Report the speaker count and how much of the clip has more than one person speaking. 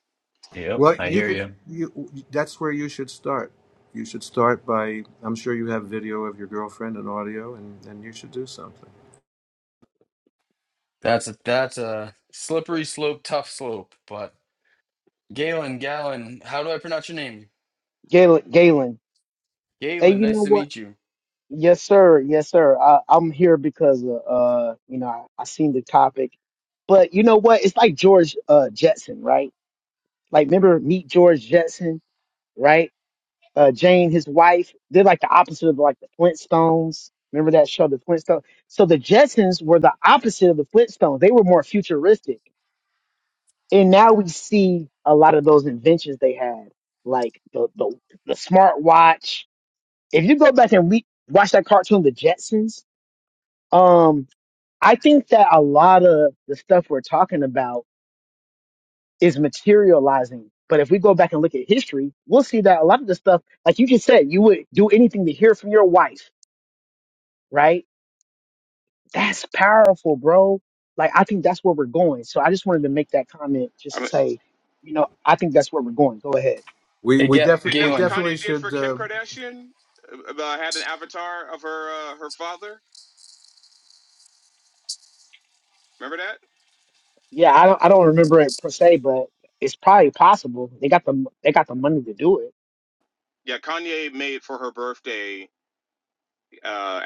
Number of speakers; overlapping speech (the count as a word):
four, about 4%